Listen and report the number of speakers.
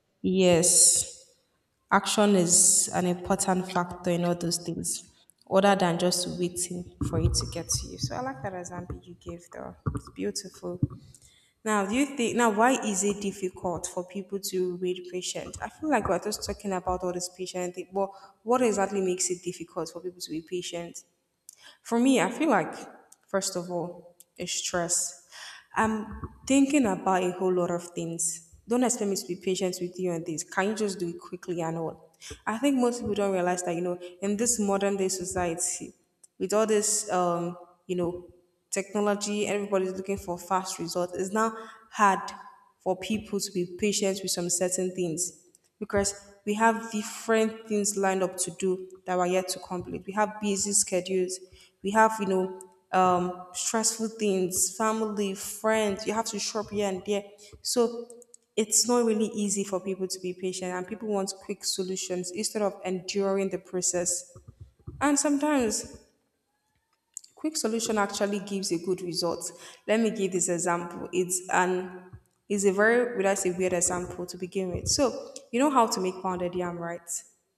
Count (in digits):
1